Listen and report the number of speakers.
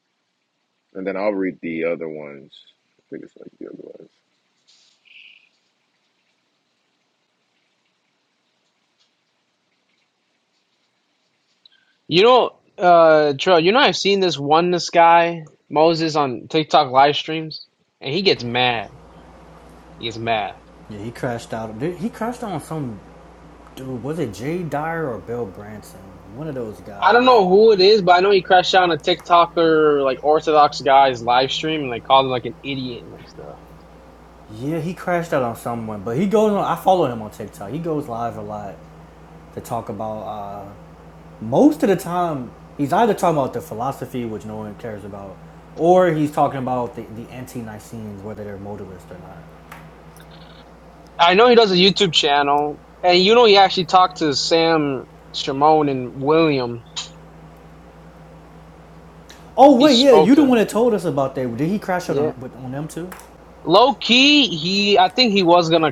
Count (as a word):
three